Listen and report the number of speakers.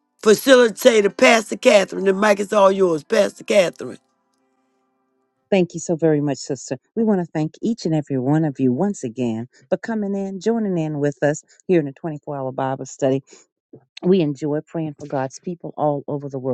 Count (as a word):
two